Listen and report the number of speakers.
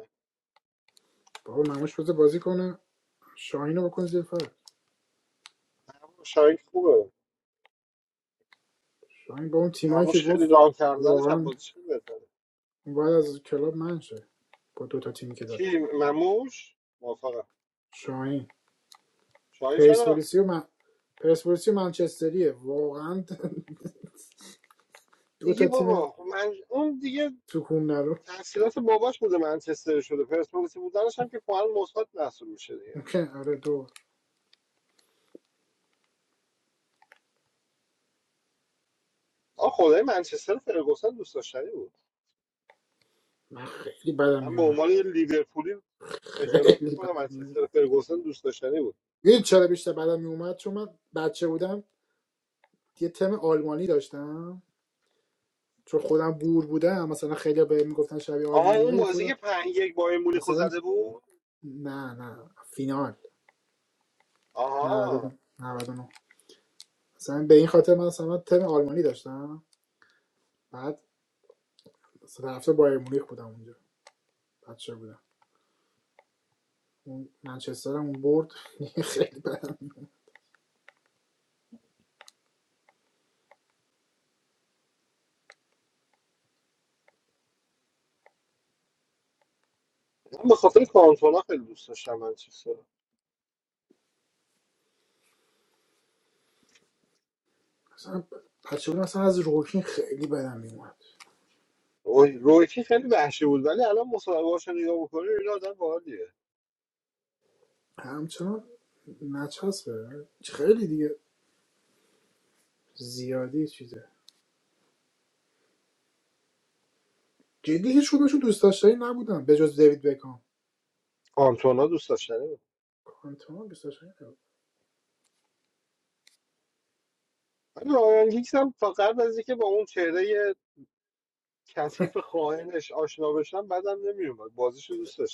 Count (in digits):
2